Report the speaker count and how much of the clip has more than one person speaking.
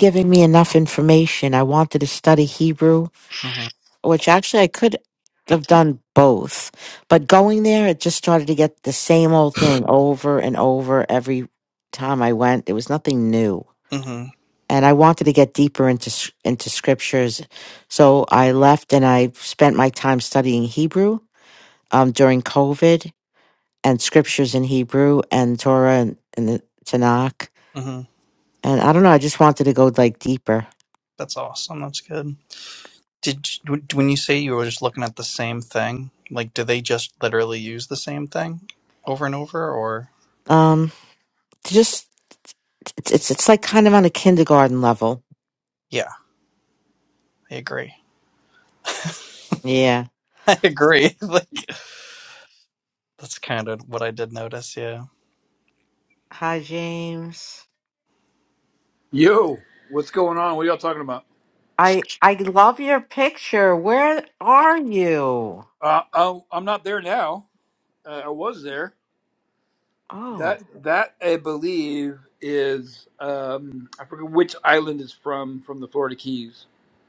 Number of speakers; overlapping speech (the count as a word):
three, under 1%